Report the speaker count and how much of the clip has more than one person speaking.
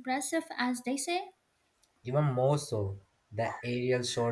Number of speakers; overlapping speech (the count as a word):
two, no overlap